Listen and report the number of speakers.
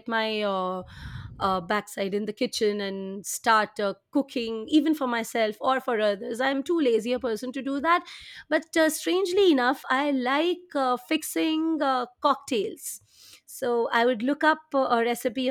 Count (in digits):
1